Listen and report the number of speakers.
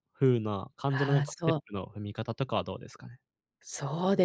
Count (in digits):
2